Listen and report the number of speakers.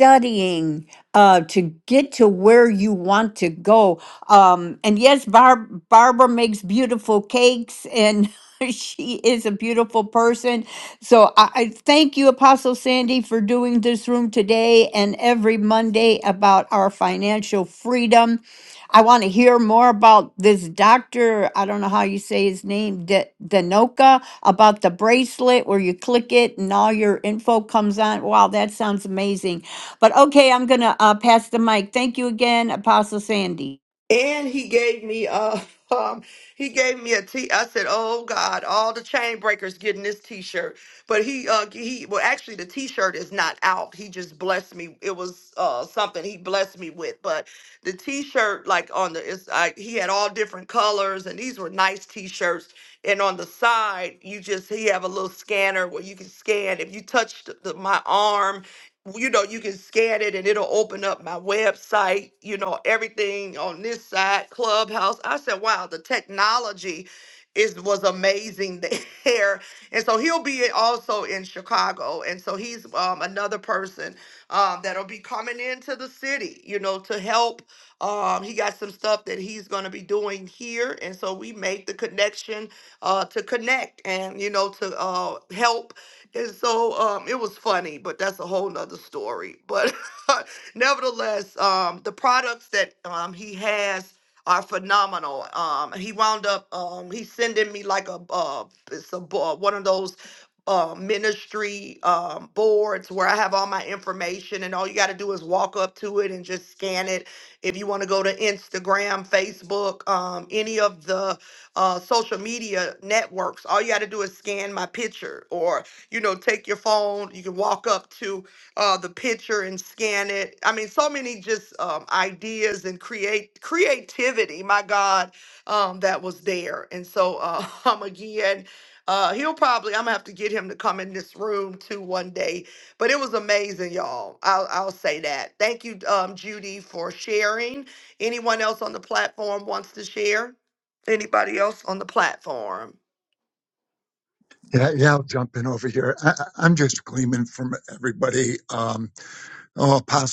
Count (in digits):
3